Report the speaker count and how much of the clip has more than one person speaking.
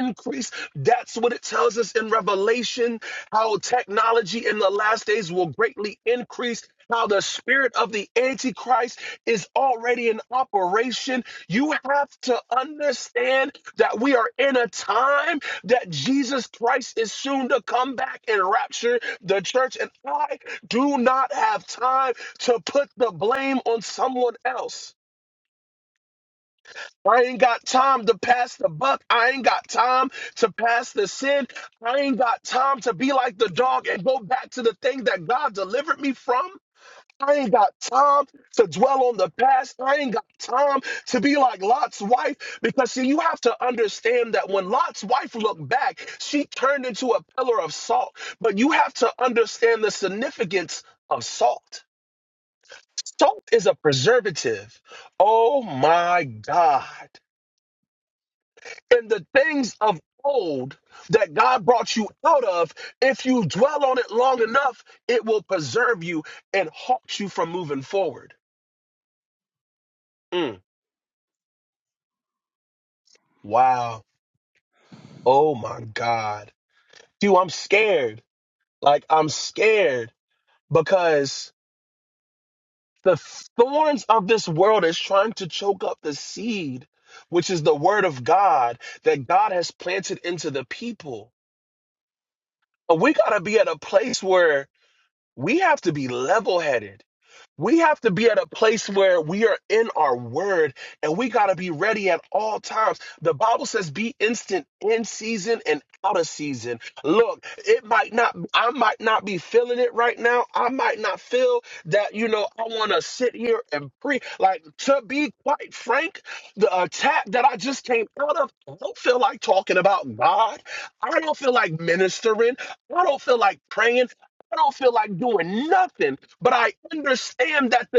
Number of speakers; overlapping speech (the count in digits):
1, no overlap